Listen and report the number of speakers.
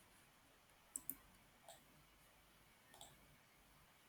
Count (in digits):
0